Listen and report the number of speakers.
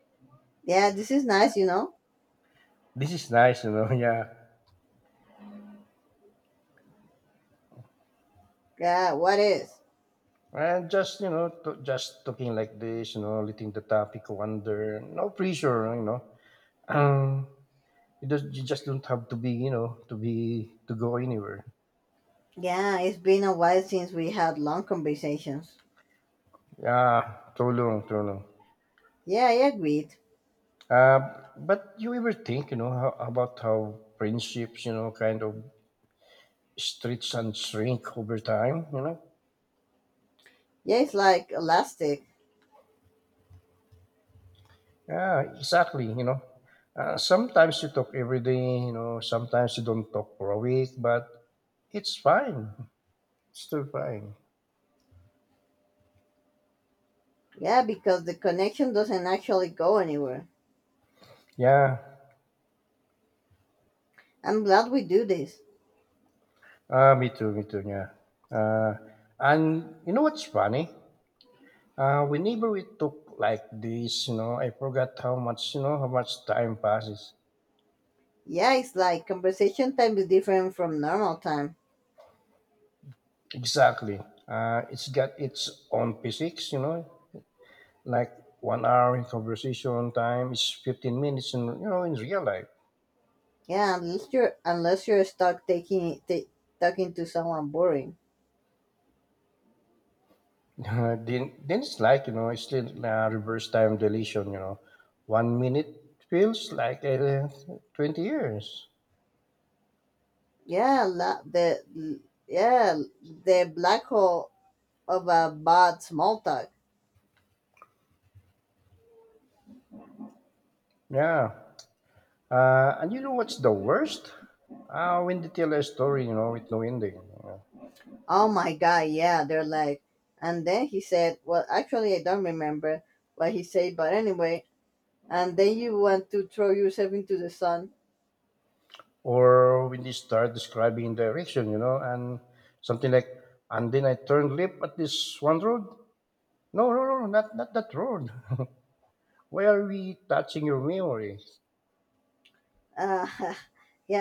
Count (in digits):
2